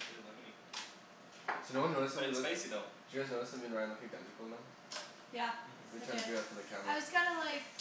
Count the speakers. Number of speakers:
three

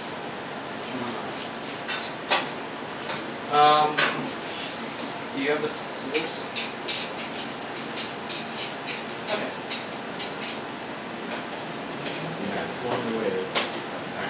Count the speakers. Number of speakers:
two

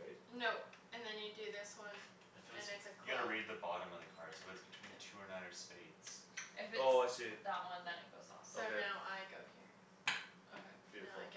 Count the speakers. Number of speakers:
four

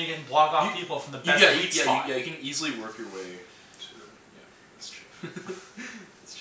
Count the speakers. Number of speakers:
two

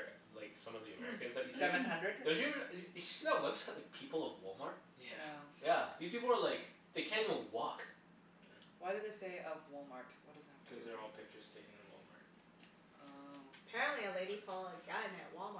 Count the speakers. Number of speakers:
four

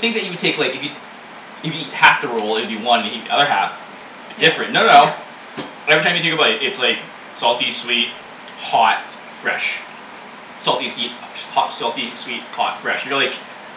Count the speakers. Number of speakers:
one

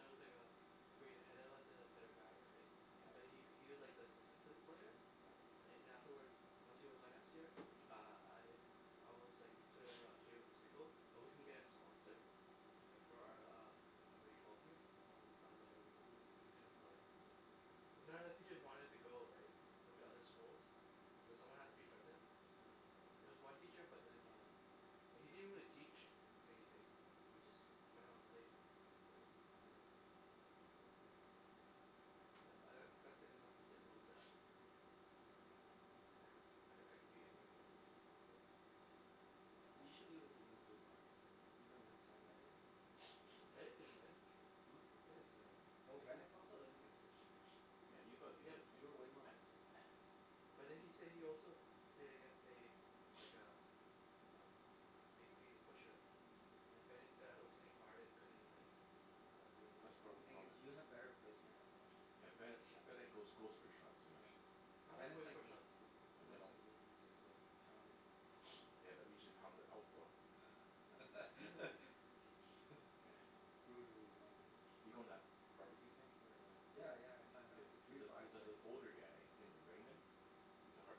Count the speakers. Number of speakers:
three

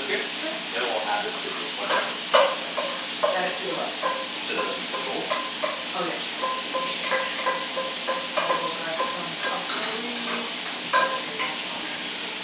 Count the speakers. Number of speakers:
two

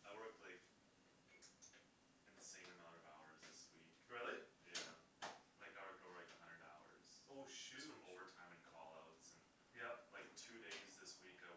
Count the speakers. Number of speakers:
two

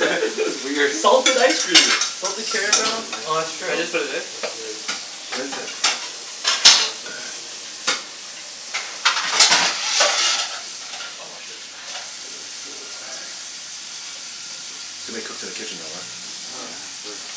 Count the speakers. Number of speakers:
four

